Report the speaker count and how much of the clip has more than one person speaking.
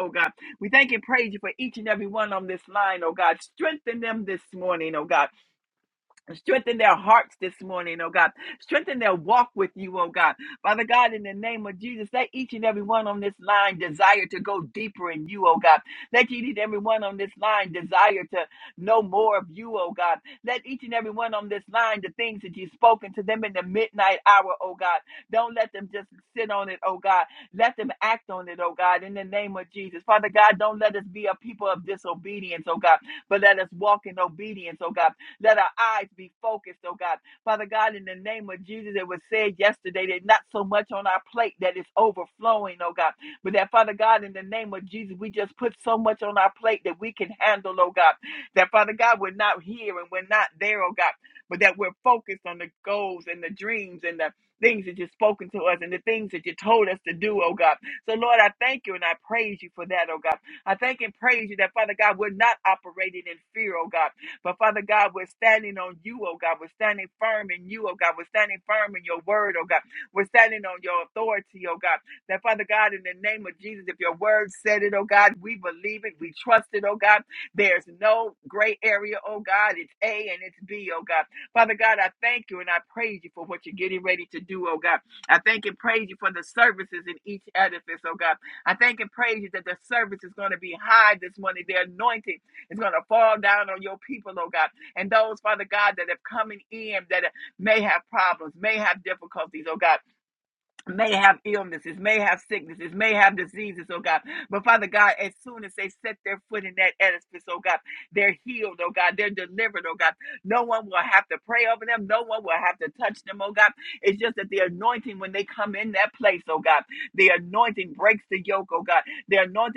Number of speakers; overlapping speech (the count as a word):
one, no overlap